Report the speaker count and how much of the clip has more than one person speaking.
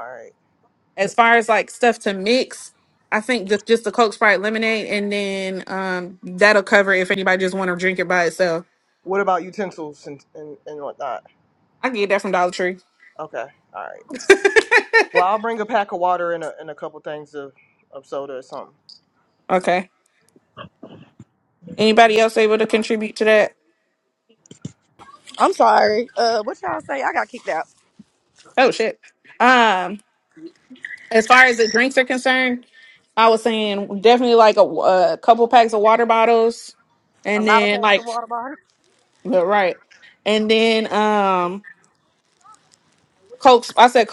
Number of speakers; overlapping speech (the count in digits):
3, about 1%